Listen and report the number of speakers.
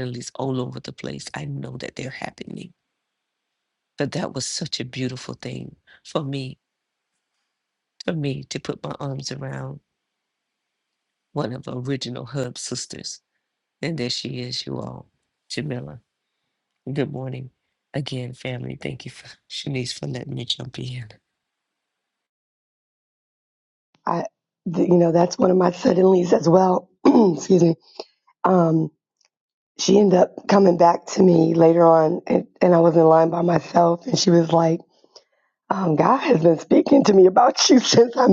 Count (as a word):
two